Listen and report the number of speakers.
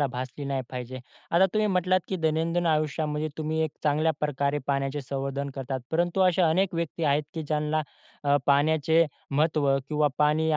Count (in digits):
1